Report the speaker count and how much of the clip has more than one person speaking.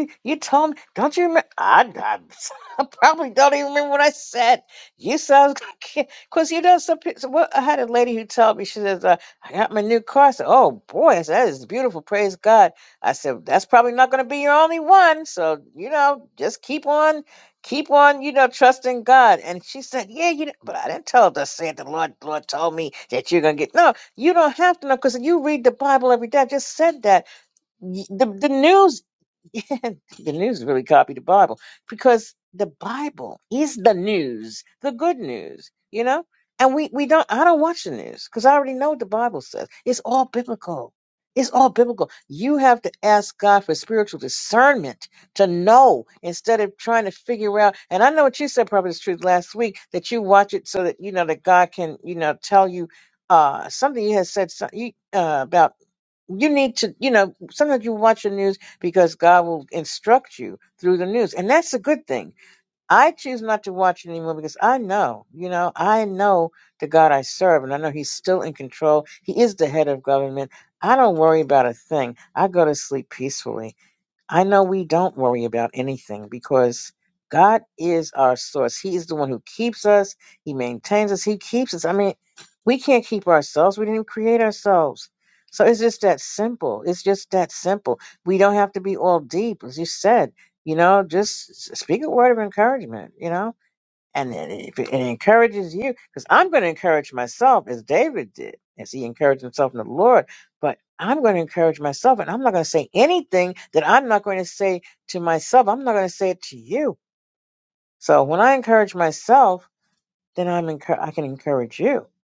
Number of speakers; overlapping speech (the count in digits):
1, no overlap